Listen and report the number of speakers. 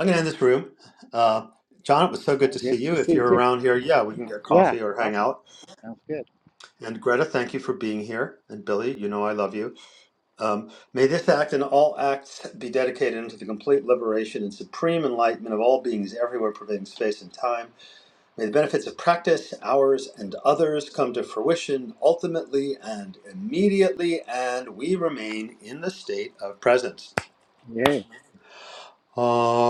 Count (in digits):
2